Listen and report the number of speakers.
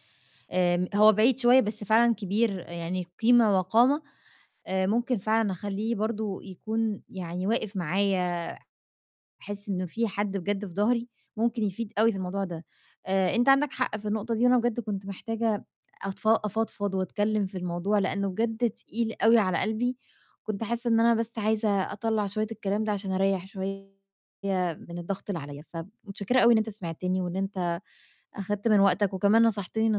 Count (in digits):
1